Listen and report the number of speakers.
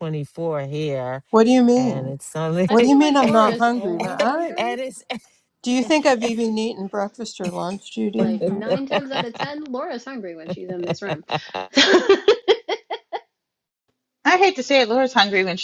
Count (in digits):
4